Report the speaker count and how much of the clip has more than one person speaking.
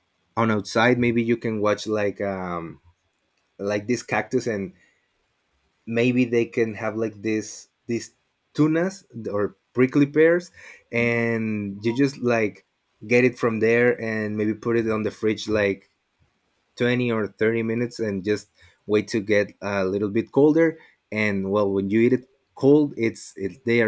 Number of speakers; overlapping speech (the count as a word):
one, no overlap